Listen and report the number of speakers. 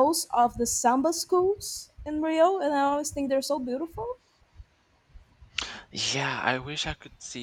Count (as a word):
two